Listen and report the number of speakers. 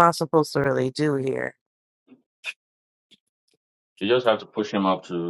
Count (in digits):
2